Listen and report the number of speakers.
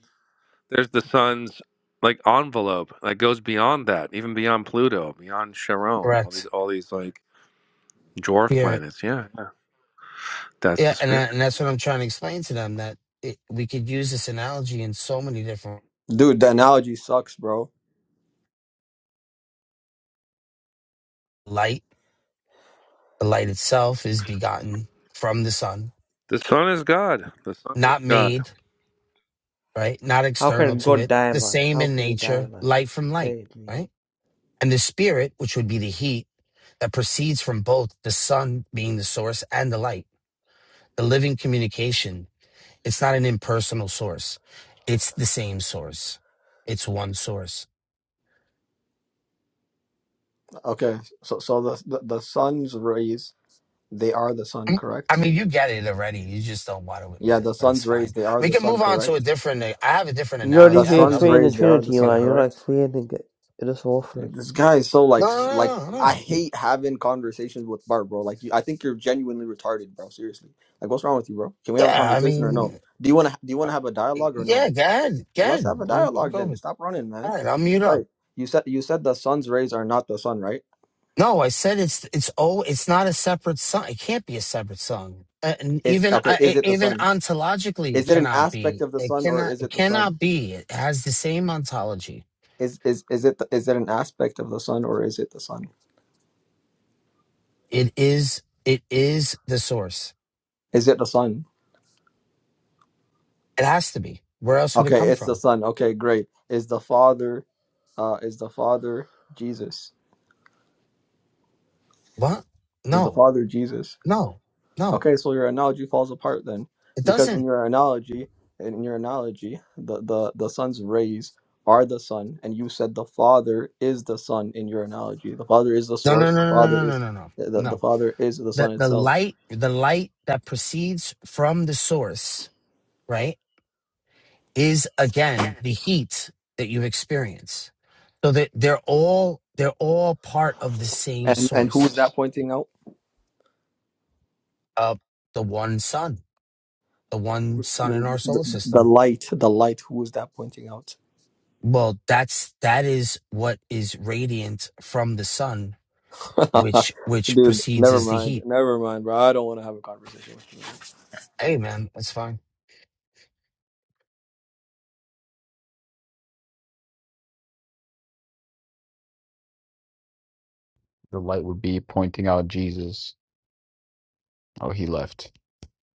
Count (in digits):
5